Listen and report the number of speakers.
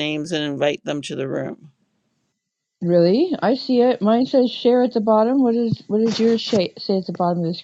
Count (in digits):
2